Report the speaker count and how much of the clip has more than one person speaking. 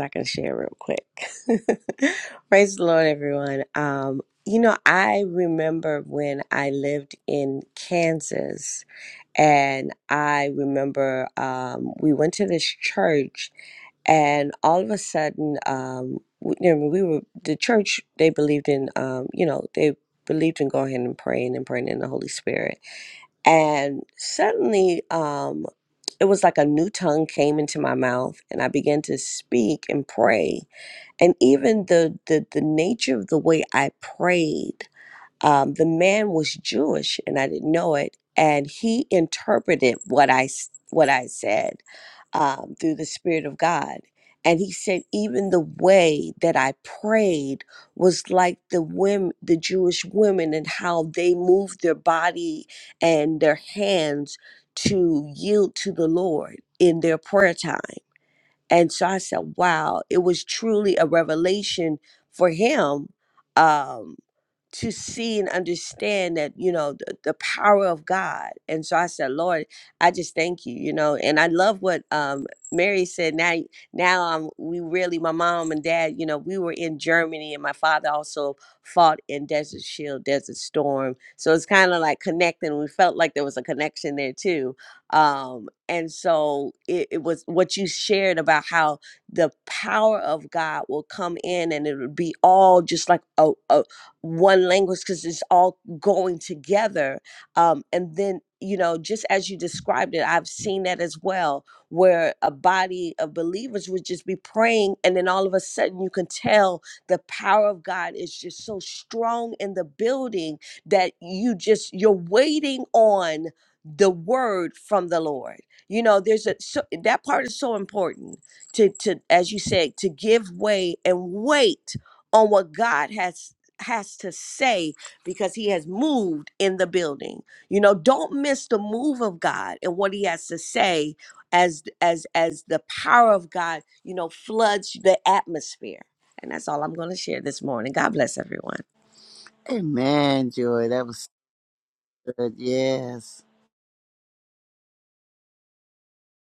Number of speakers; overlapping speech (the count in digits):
2, no overlap